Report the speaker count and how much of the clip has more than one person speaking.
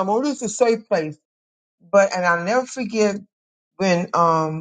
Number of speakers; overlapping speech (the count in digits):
1, no overlap